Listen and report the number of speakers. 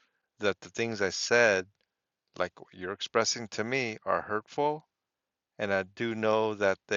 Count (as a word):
one